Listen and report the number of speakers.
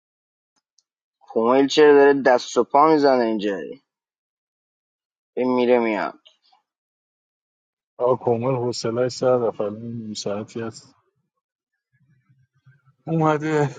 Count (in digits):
2